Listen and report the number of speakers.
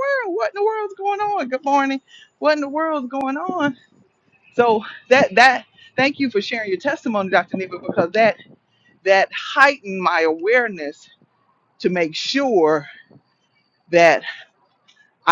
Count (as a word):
one